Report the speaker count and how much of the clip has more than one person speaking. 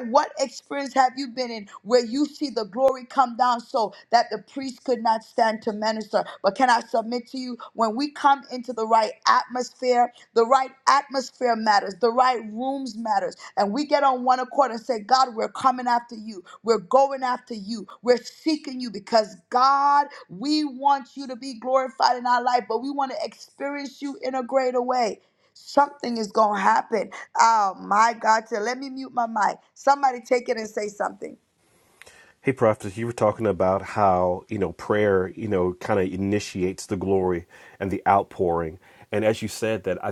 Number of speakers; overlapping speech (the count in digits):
2, no overlap